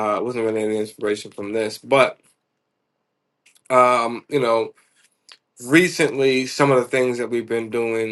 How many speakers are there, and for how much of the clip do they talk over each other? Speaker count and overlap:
one, no overlap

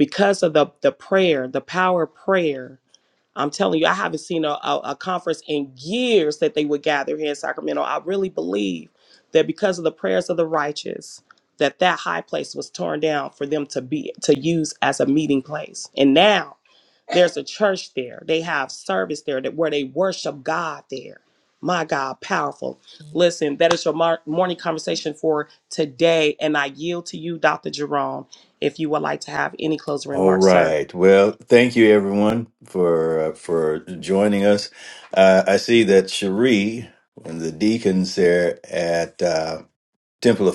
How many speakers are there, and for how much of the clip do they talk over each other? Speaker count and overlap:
two, about 1%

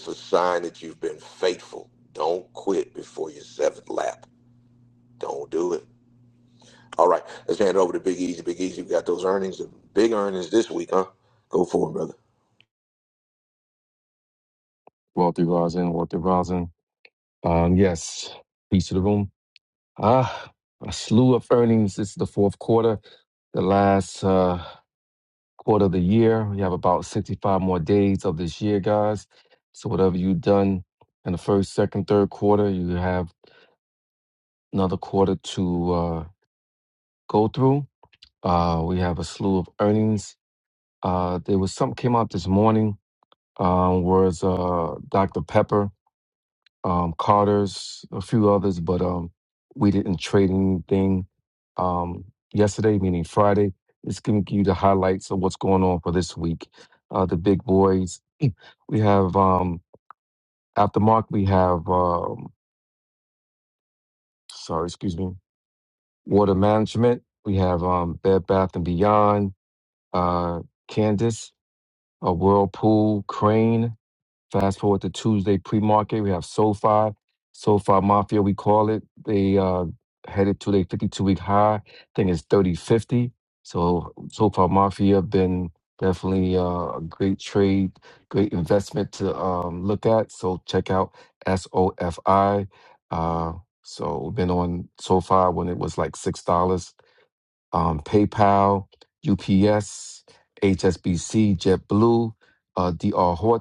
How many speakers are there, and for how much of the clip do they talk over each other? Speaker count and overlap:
two, no overlap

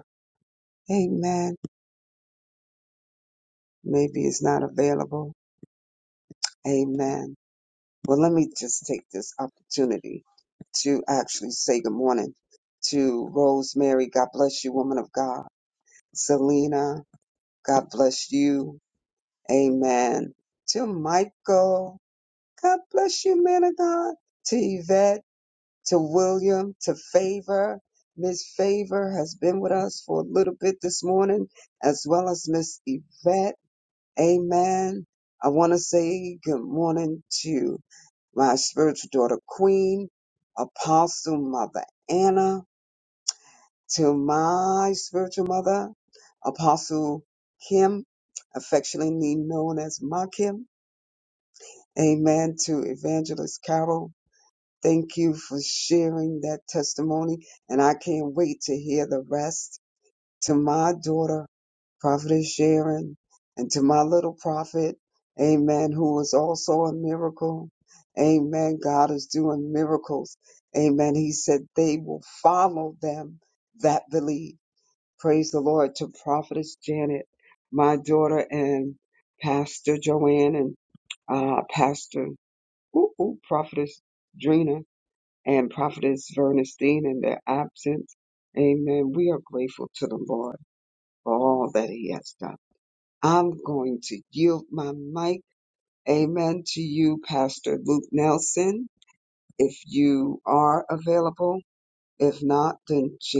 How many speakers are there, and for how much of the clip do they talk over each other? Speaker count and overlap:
one, no overlap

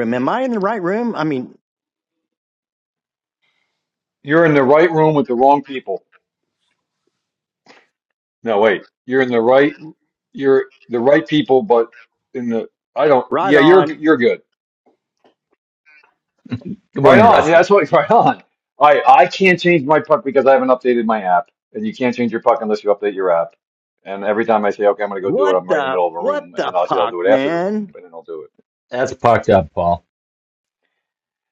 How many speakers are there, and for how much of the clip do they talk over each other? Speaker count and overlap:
three, about 12%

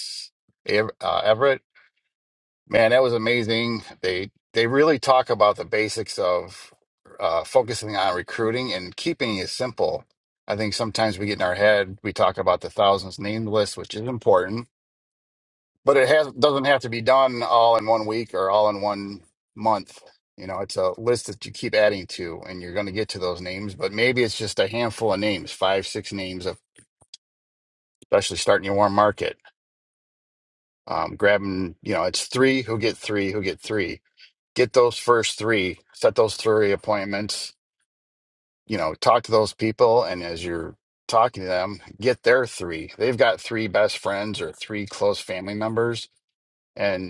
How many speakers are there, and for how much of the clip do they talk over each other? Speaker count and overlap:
one, no overlap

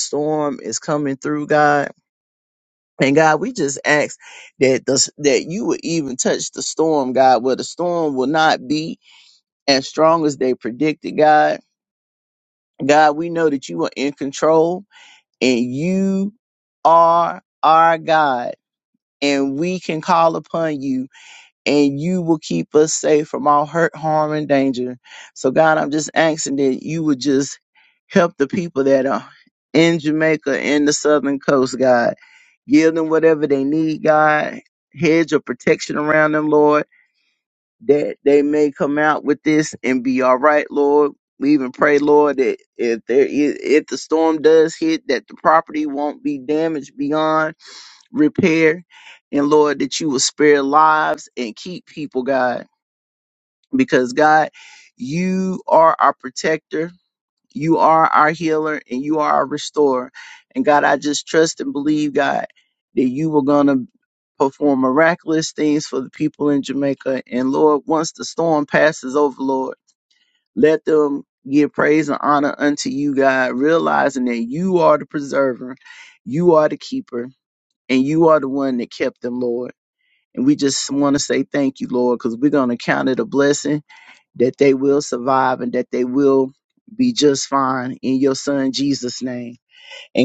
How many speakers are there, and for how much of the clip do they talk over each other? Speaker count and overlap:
one, no overlap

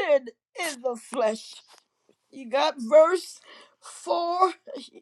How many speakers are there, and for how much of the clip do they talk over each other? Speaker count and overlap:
one, no overlap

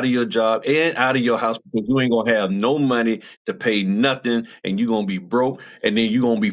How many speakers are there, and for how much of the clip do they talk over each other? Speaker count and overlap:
one, no overlap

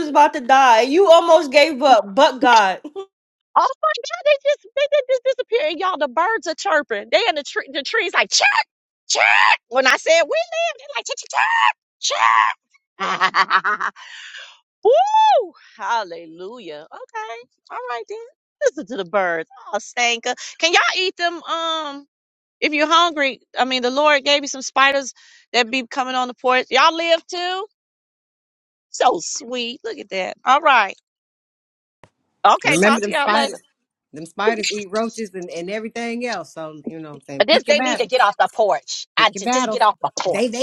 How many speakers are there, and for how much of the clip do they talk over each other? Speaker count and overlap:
three, about 4%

